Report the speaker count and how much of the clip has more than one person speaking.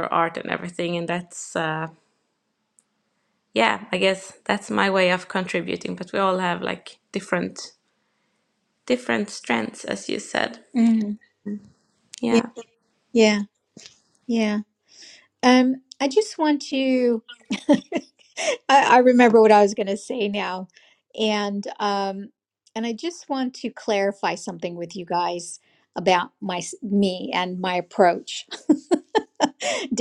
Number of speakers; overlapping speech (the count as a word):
two, under 1%